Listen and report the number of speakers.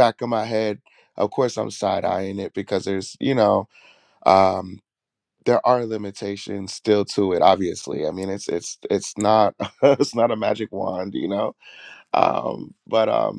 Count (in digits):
1